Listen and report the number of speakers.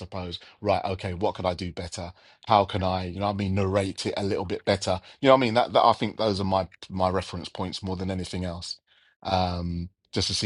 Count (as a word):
one